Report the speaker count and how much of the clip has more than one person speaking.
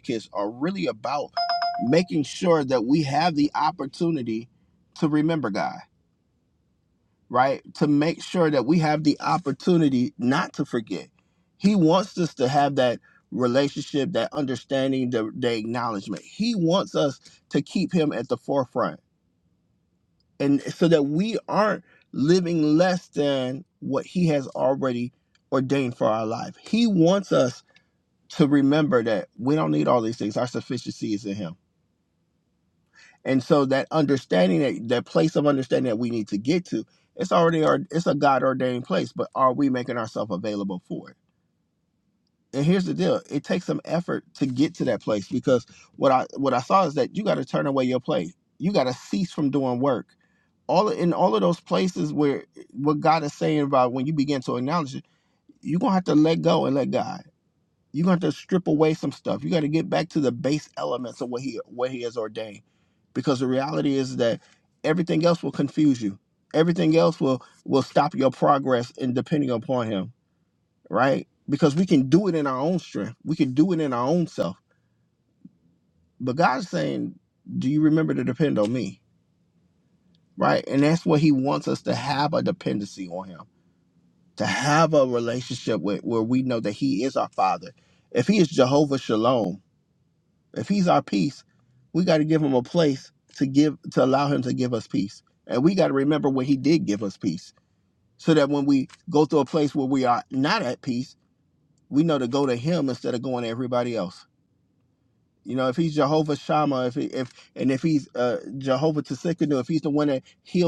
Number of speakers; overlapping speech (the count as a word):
one, no overlap